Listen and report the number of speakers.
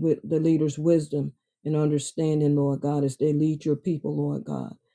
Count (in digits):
1